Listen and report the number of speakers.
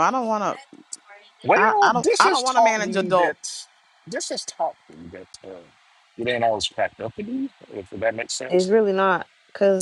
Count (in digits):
3